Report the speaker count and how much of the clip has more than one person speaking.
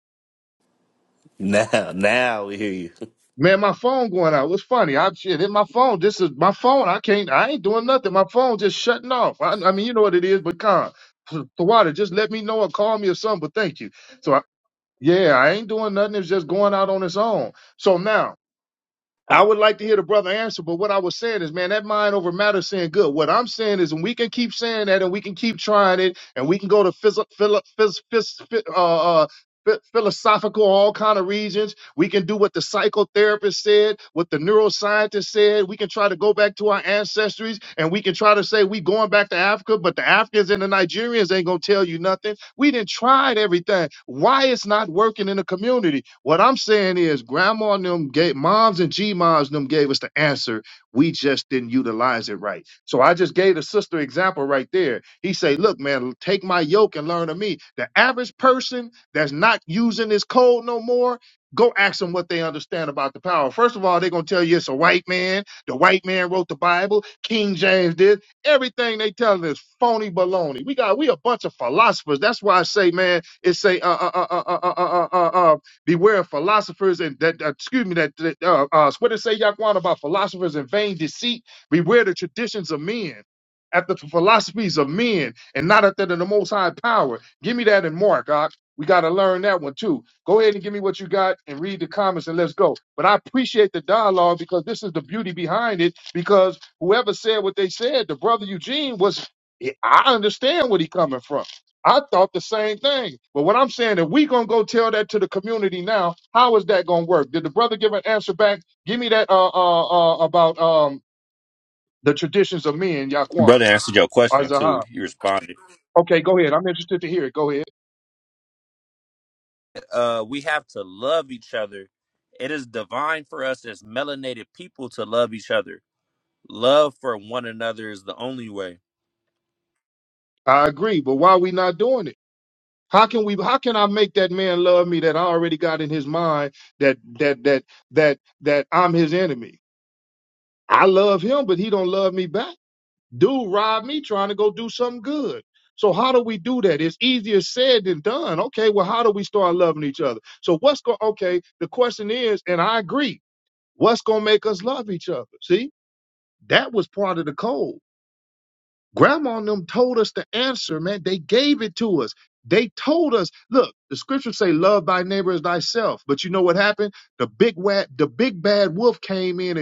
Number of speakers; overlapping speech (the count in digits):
3, under 1%